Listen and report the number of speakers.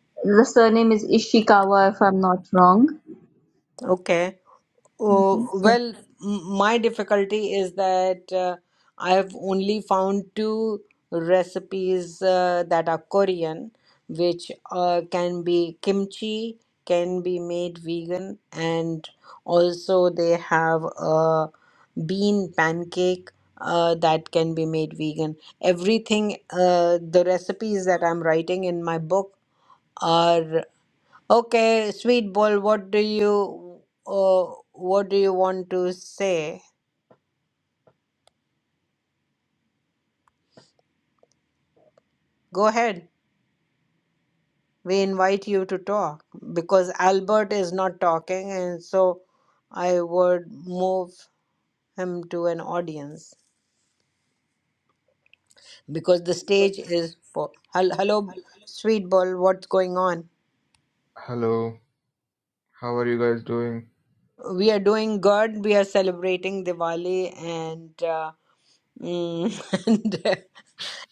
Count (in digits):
3